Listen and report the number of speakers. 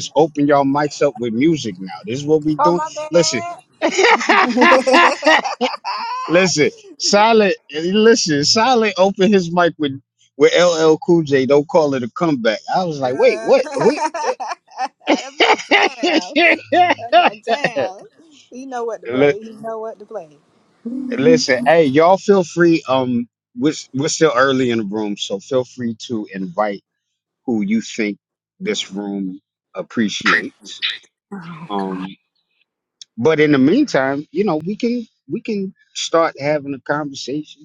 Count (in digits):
2